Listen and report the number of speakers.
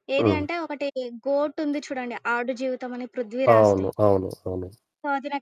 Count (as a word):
two